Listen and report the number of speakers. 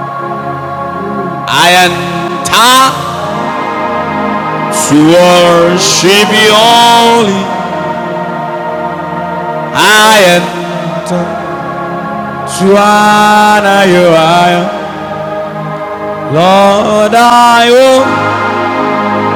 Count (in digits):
2